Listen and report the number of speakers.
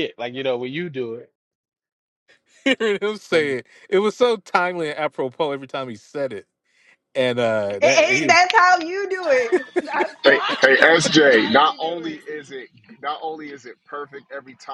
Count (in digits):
4